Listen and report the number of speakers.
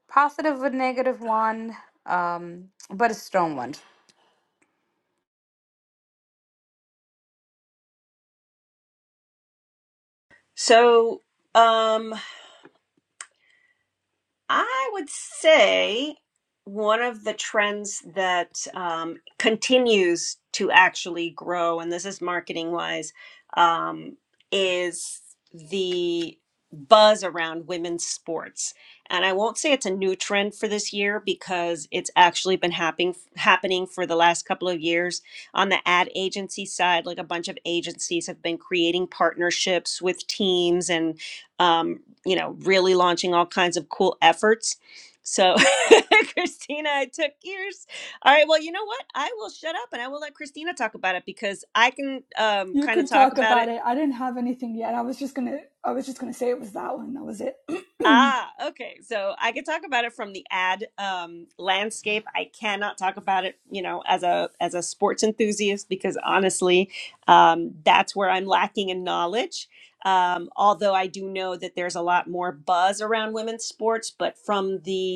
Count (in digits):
3